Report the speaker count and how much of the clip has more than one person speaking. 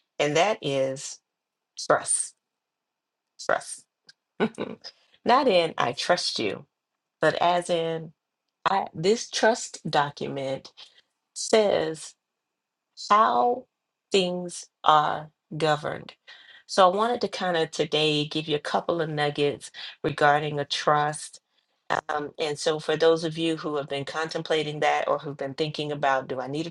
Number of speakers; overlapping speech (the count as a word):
one, no overlap